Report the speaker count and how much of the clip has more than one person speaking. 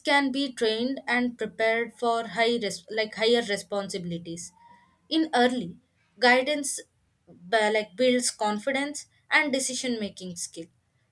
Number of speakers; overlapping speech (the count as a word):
one, no overlap